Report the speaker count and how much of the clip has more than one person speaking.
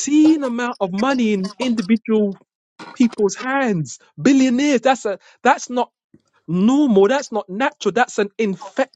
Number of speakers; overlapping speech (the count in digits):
1, no overlap